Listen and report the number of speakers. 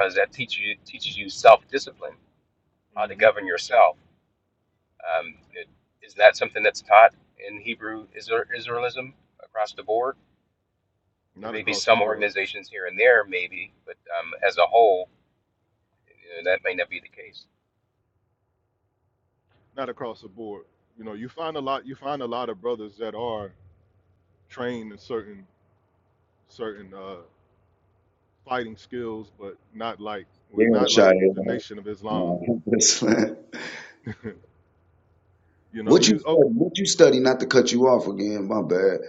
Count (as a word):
three